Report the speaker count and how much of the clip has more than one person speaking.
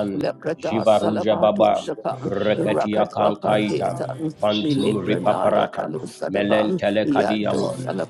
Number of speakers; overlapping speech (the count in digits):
2, about 72%